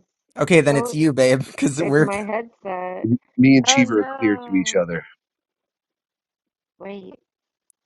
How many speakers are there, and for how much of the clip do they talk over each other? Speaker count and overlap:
three, about 20%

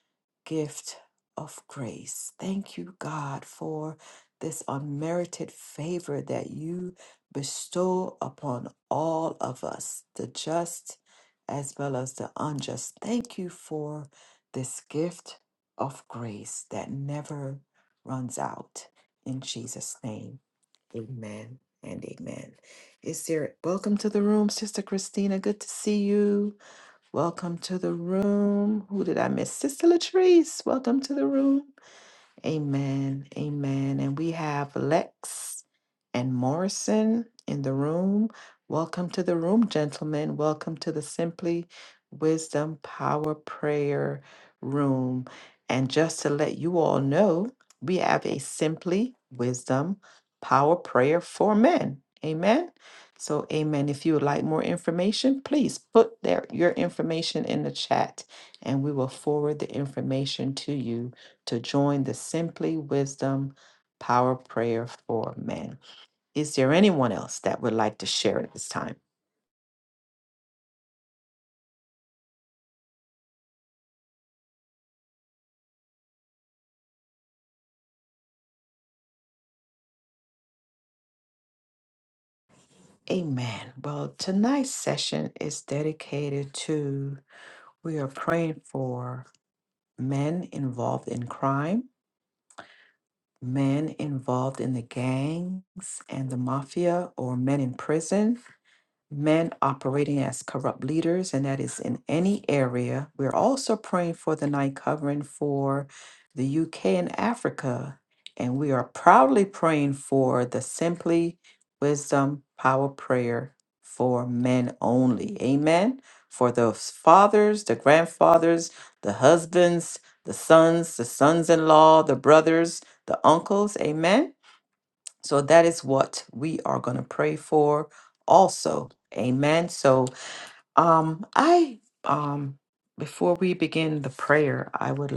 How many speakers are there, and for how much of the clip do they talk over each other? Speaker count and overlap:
one, no overlap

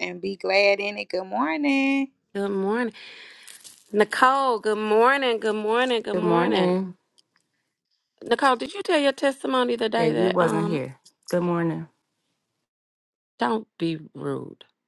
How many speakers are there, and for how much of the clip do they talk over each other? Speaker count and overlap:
three, about 10%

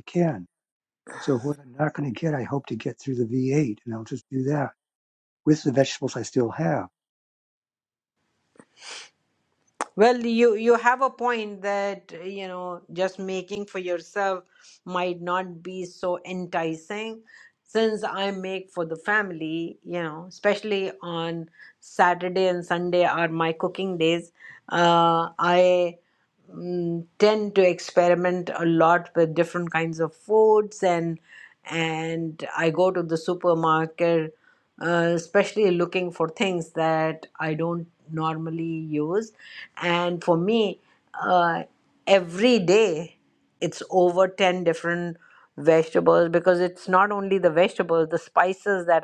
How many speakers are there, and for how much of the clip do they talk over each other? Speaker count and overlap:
two, no overlap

